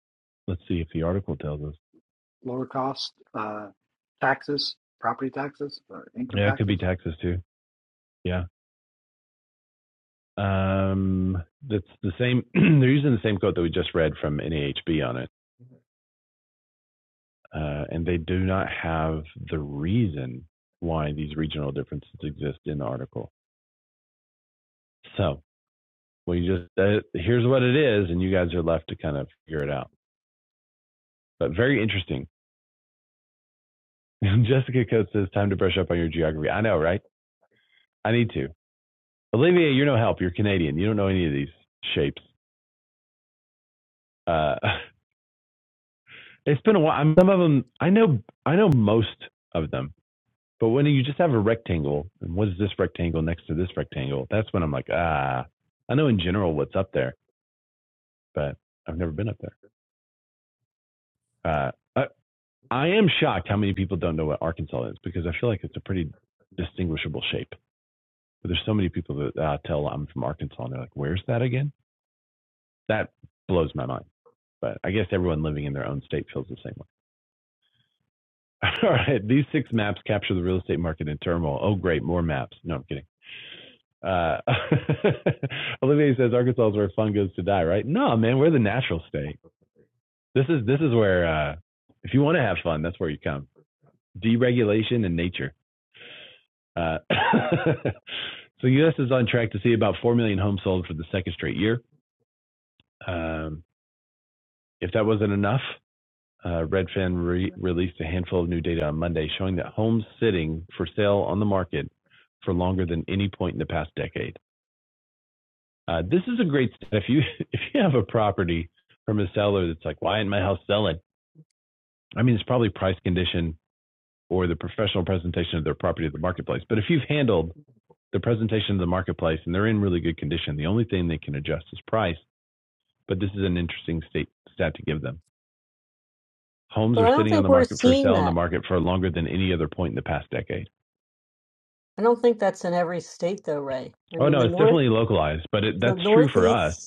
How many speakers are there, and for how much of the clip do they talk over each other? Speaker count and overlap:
3, about 2%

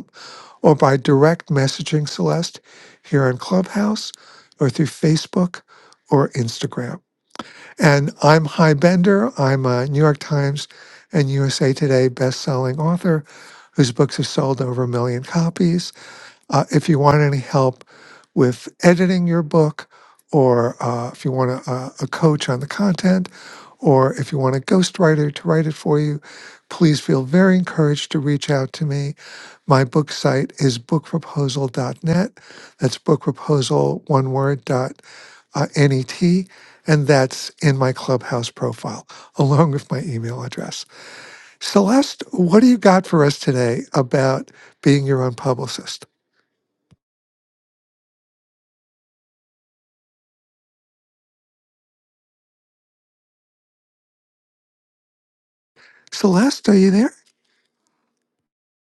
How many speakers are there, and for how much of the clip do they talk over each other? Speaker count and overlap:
1, no overlap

